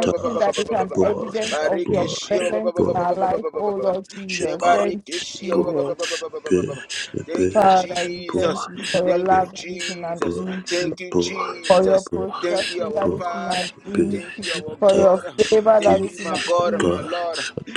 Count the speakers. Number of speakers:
three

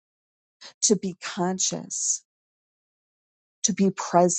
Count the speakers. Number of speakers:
one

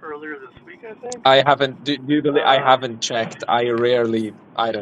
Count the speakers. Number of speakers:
two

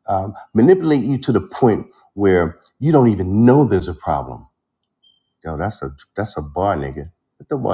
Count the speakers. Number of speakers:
one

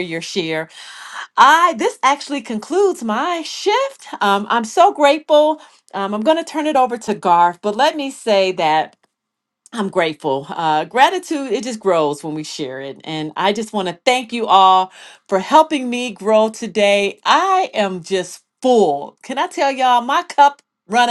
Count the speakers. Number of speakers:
one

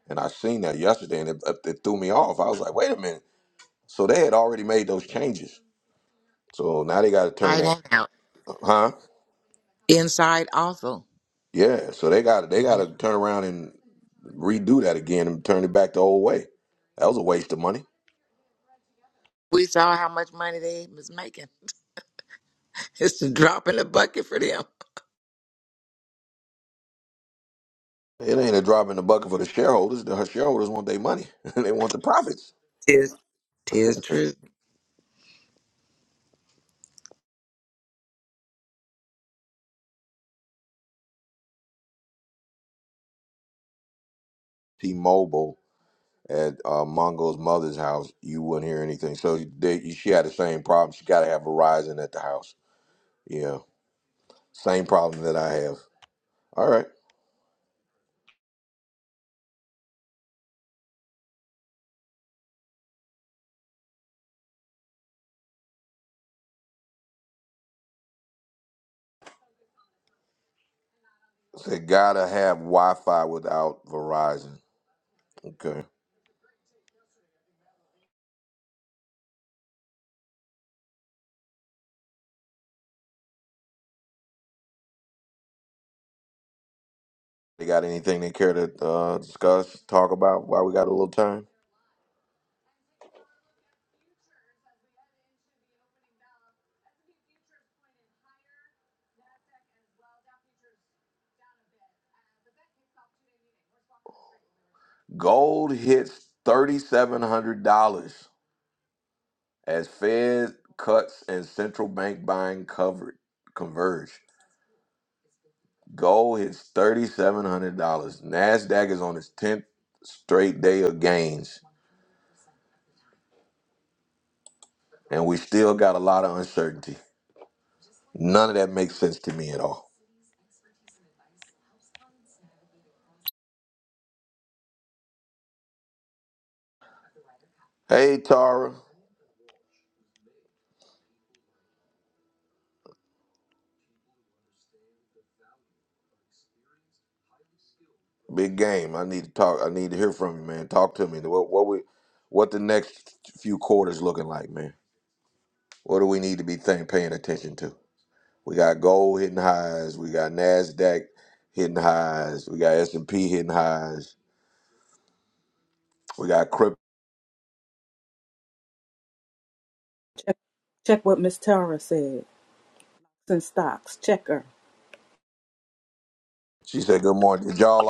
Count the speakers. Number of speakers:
three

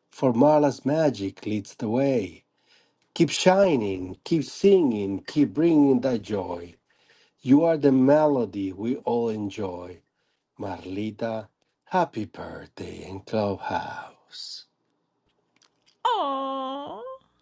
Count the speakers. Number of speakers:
two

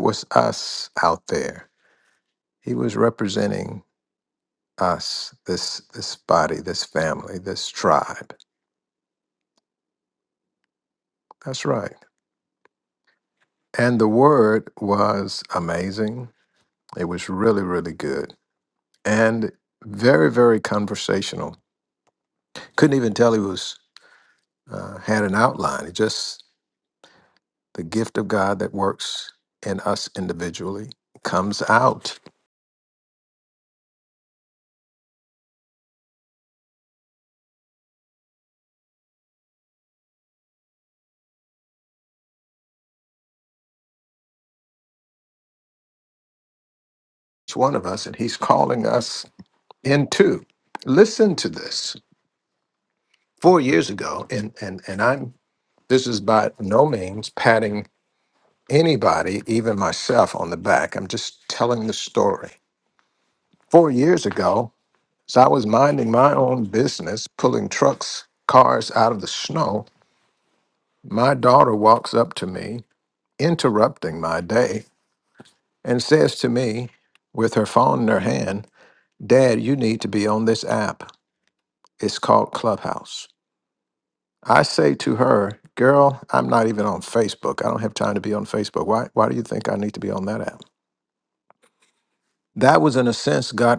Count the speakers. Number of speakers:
one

